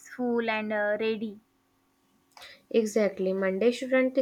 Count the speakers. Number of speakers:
two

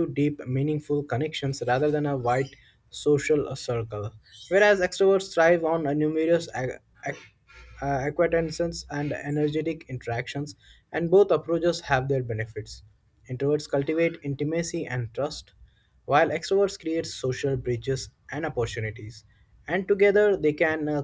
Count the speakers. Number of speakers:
one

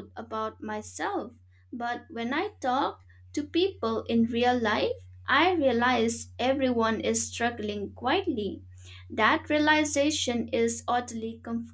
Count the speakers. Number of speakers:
one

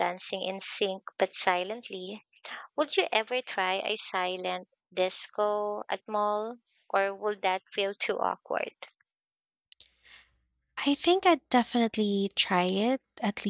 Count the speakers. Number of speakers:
two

